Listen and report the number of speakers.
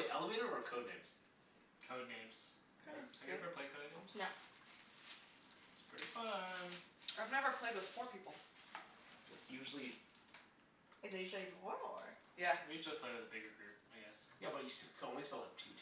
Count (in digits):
4